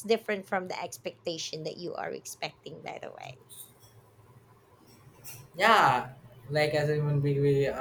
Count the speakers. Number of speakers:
two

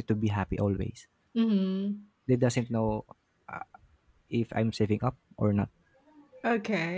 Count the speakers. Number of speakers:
two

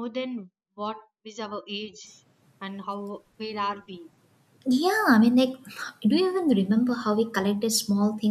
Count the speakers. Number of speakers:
two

